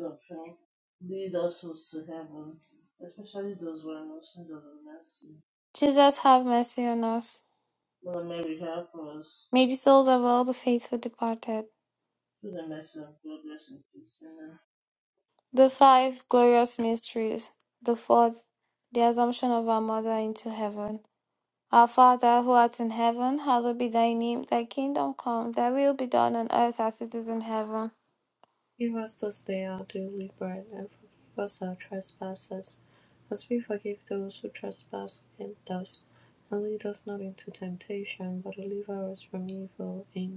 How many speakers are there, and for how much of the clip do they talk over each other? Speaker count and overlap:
3, no overlap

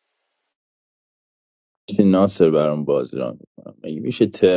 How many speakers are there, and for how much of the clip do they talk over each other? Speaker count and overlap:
1, no overlap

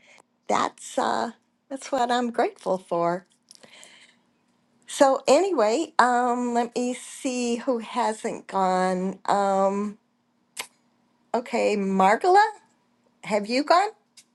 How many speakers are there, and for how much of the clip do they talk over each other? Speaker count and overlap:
1, no overlap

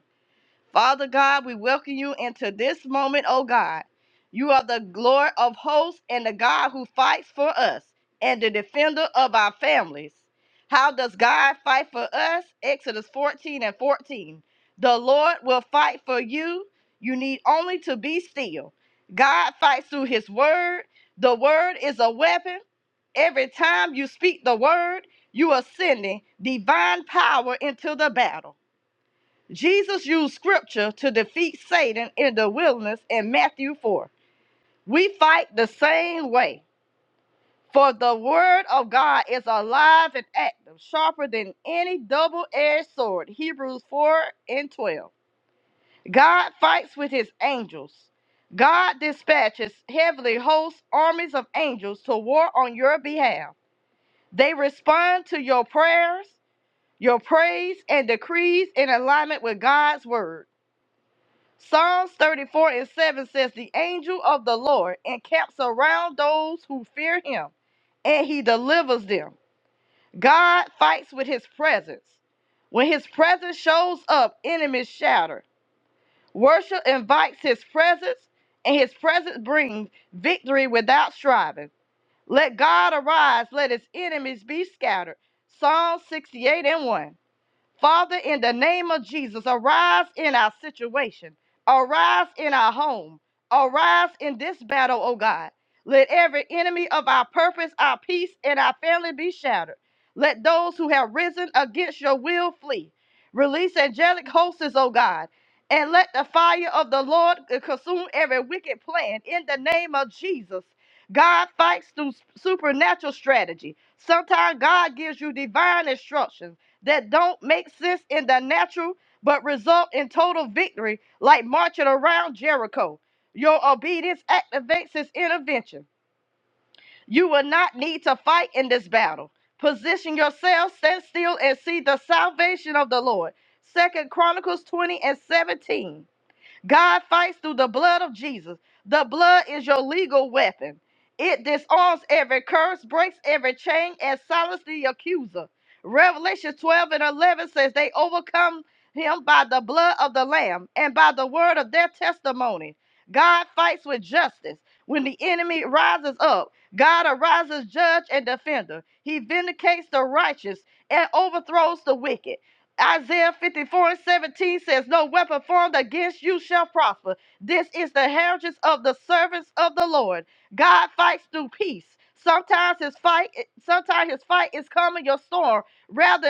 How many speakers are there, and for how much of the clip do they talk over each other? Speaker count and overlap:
1, no overlap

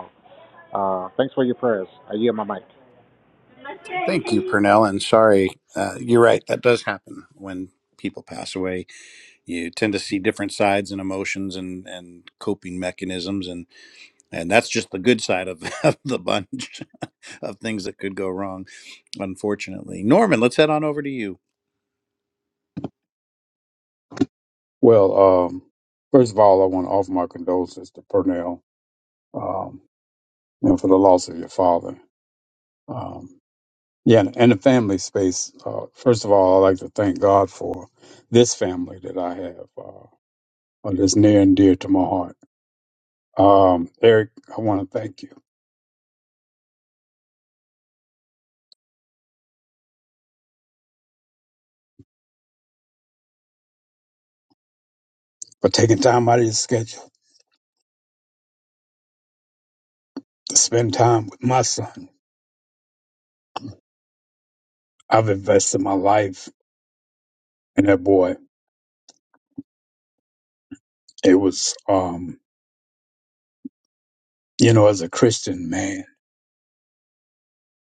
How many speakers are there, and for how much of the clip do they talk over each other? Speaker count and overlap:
3, no overlap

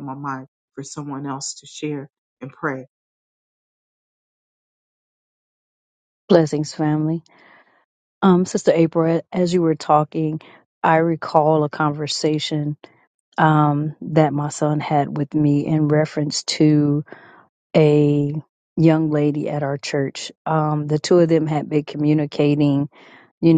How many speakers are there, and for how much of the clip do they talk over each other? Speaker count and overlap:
2, no overlap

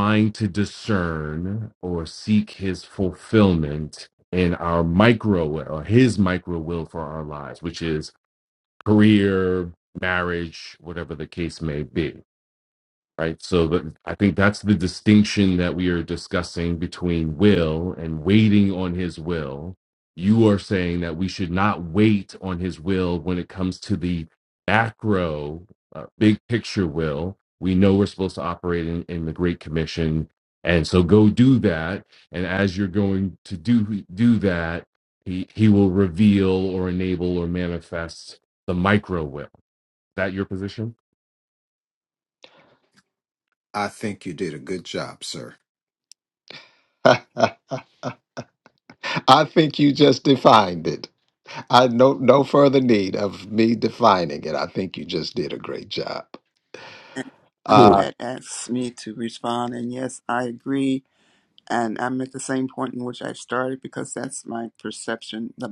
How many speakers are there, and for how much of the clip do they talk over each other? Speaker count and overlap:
3, about 1%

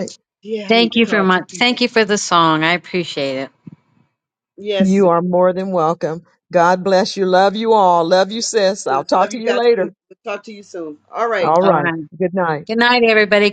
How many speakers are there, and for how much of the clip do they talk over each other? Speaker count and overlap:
3, about 22%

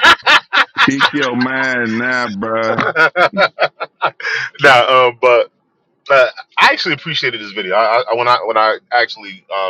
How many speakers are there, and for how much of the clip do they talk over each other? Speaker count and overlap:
2, no overlap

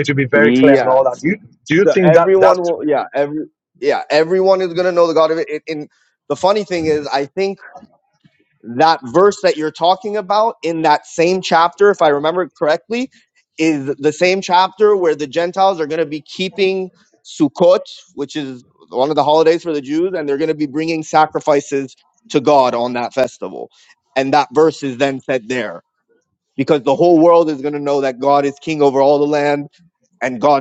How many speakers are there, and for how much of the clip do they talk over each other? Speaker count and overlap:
2, about 4%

